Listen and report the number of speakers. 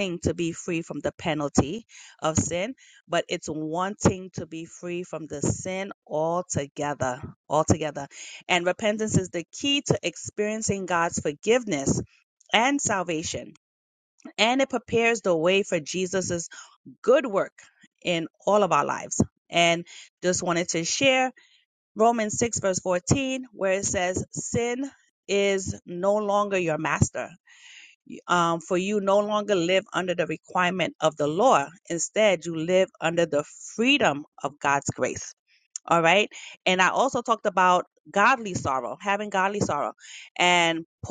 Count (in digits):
1